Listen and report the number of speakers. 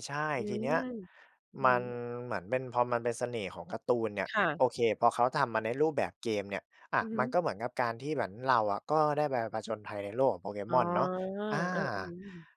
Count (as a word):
two